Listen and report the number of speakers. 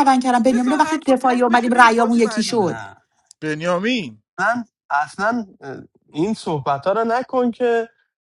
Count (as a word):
three